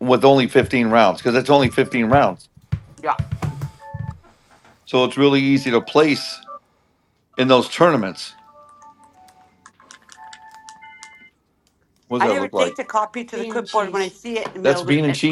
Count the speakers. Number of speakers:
2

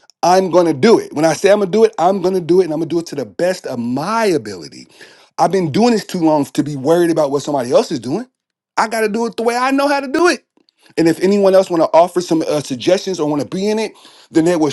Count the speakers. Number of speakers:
1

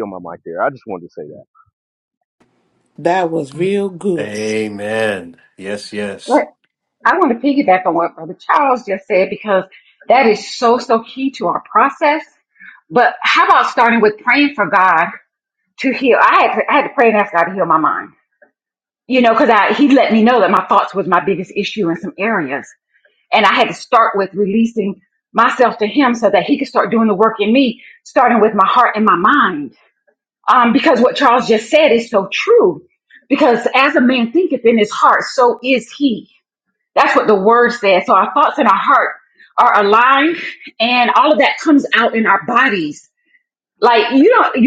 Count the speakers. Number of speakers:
4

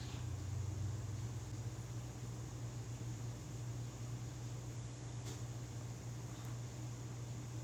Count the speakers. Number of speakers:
0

